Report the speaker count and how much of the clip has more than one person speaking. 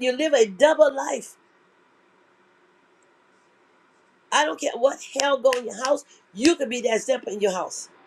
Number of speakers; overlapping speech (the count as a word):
one, no overlap